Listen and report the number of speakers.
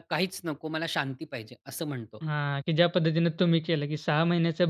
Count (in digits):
2